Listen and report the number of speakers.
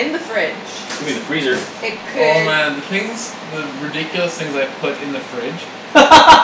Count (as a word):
three